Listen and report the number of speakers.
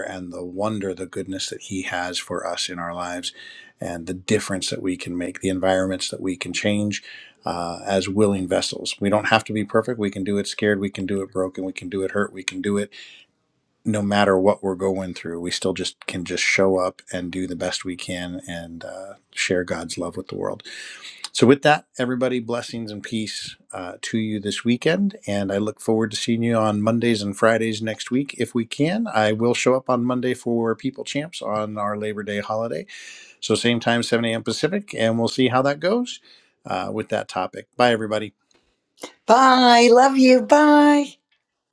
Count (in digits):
2